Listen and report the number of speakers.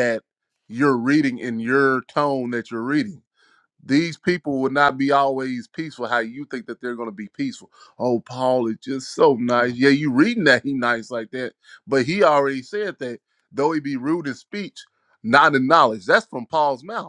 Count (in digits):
1